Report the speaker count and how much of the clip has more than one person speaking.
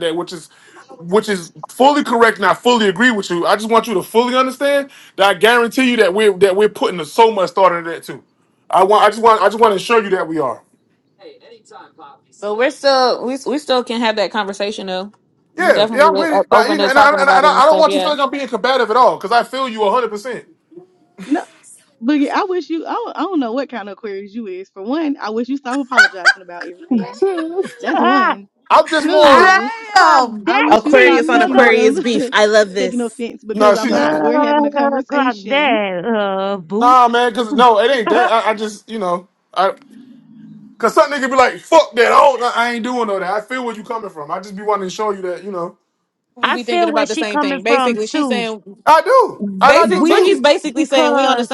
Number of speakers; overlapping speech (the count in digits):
4, about 23%